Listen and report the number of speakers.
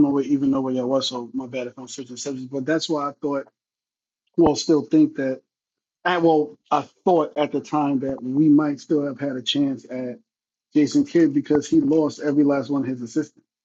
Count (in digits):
1